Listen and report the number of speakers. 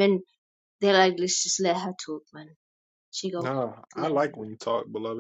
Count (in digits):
2